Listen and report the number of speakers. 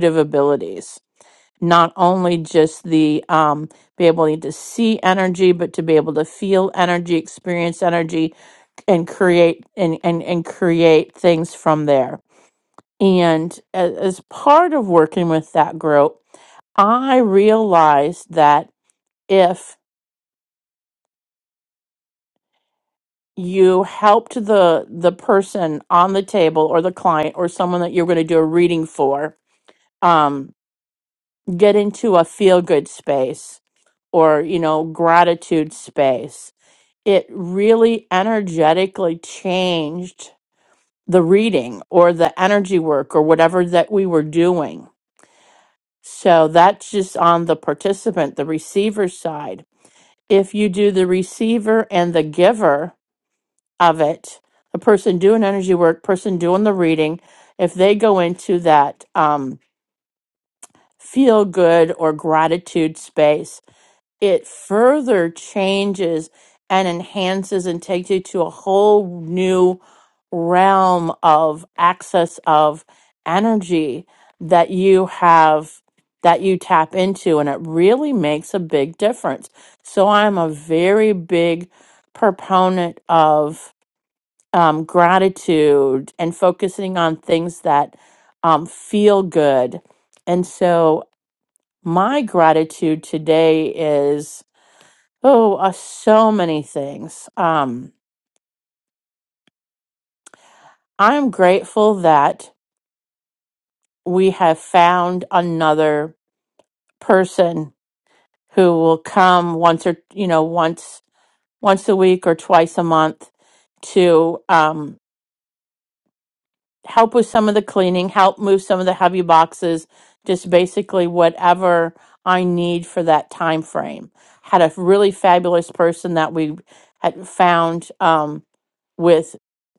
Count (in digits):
1